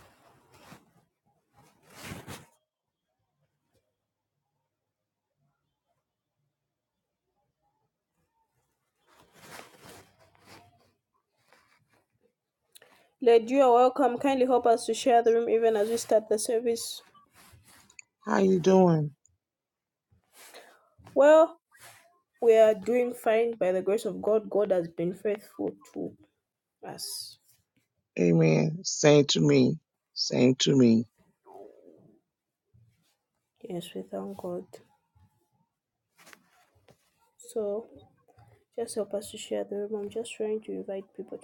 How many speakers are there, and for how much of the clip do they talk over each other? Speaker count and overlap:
2, no overlap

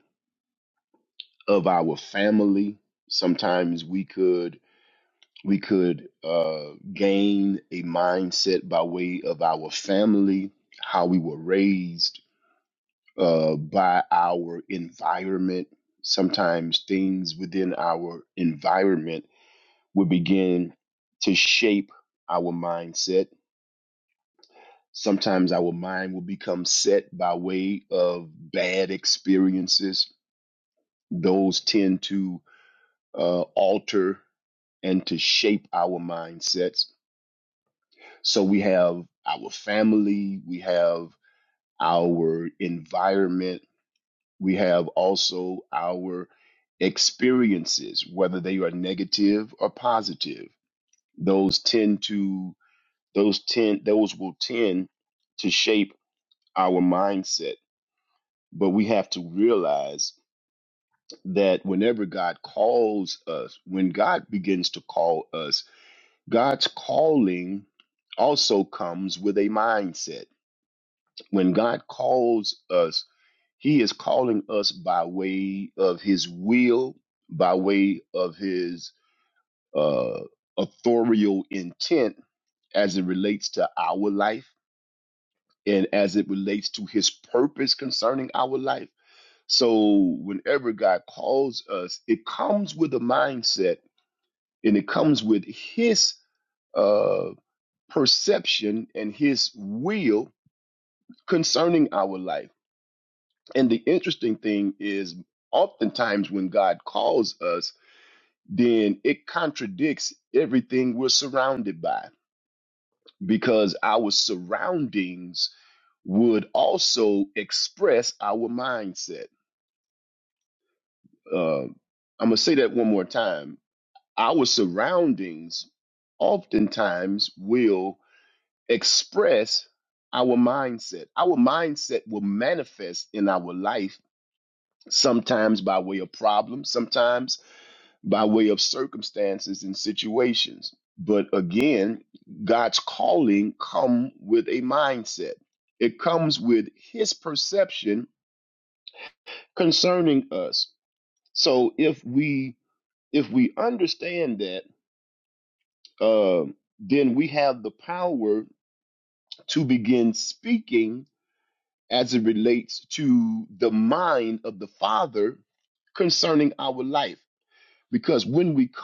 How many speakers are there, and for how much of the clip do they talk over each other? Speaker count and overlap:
1, no overlap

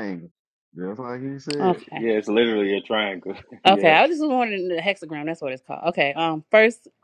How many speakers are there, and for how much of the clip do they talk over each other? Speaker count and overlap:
3, about 10%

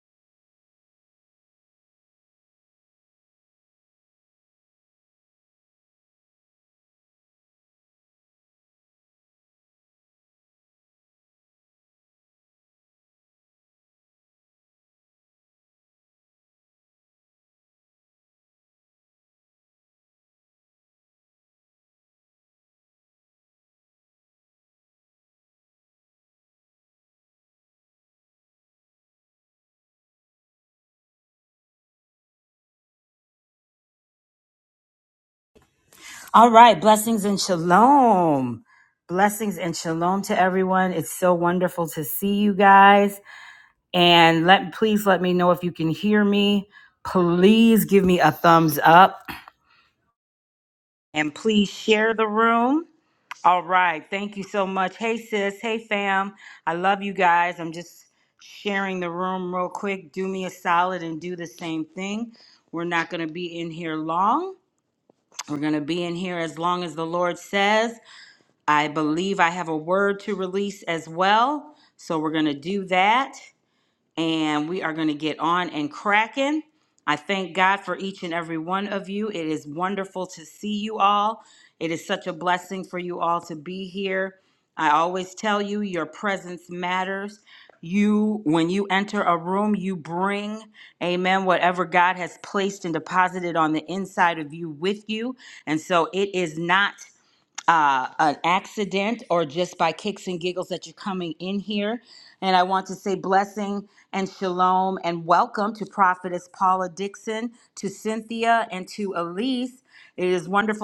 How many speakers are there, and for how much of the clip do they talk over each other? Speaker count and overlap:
1, no overlap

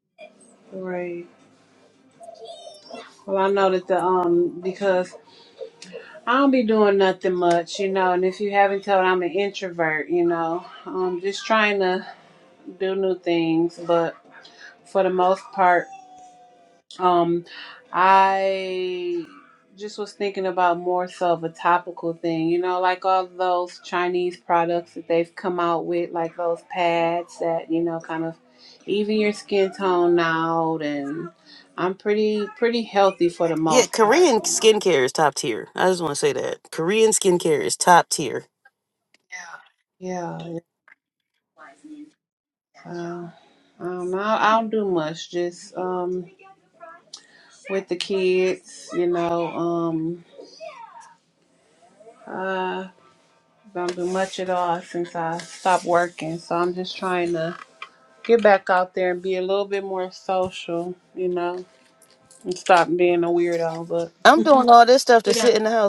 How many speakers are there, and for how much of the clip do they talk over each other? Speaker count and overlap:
2, about 2%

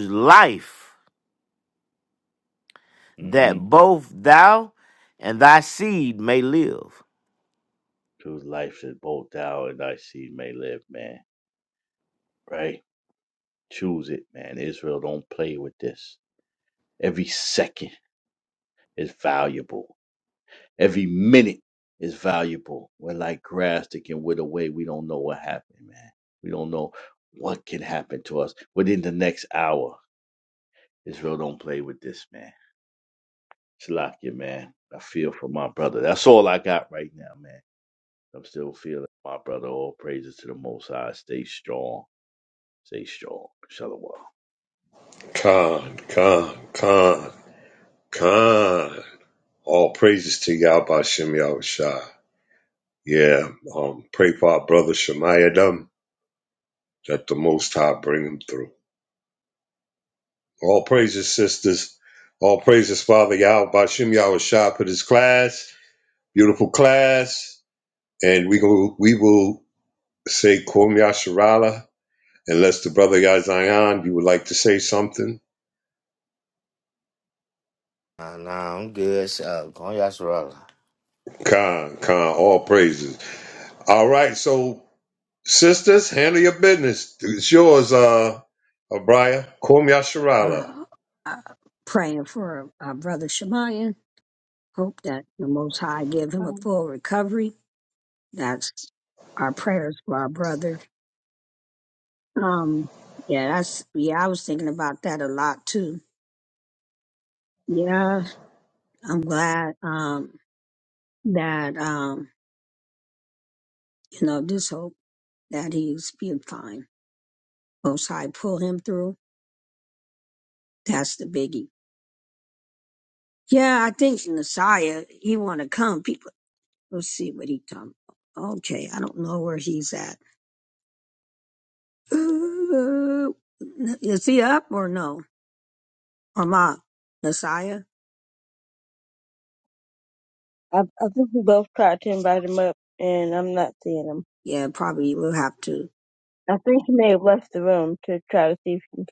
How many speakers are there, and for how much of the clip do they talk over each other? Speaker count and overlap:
5, about 1%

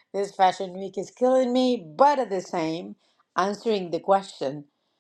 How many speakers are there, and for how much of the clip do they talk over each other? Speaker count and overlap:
1, no overlap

